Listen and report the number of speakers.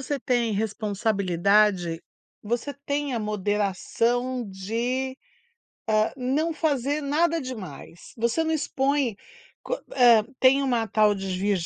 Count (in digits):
1